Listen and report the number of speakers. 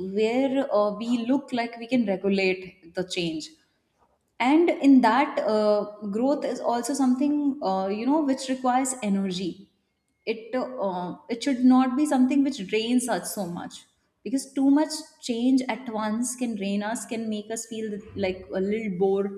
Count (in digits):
1